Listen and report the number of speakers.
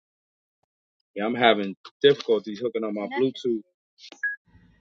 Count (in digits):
1